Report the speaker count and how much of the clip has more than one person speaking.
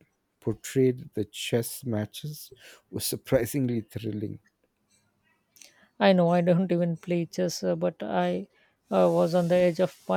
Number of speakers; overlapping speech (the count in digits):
2, no overlap